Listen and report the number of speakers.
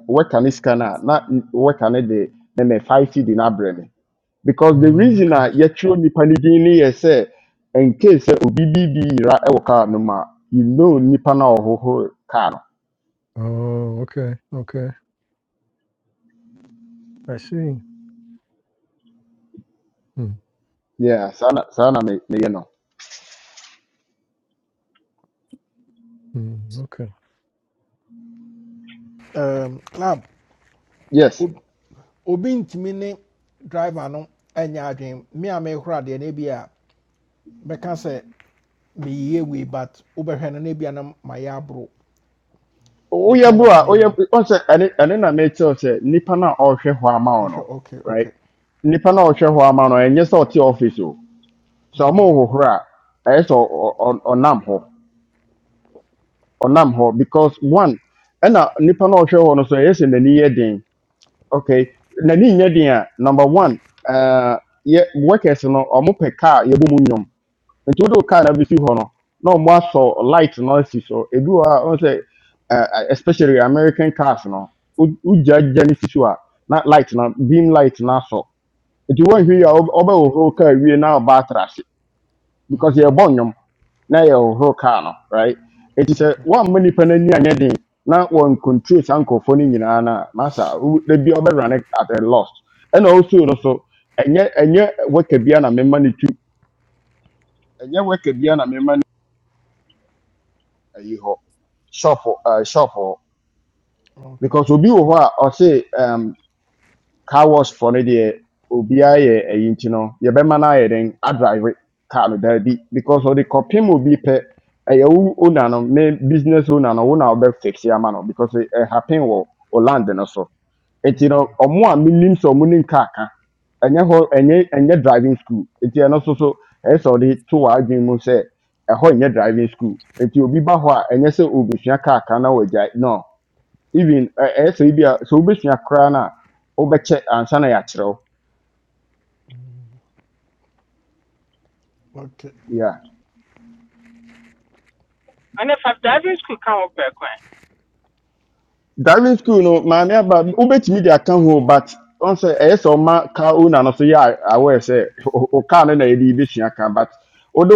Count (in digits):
4